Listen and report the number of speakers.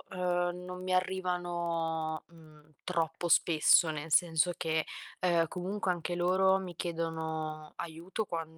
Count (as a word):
one